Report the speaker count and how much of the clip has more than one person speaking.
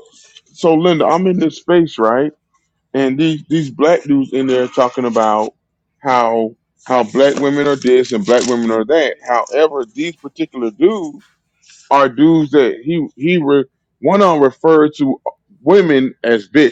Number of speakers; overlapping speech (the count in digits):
1, no overlap